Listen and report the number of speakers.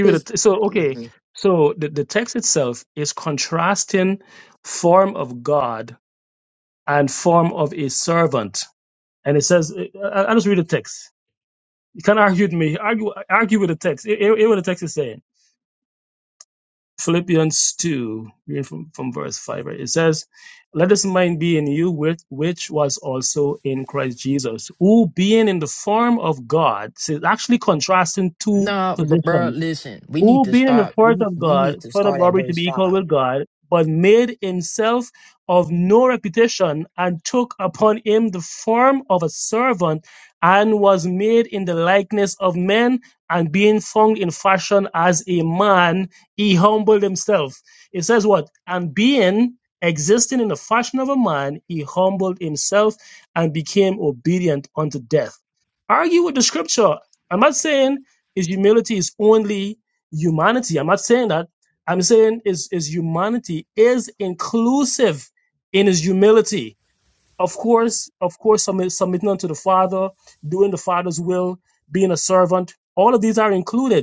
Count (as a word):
two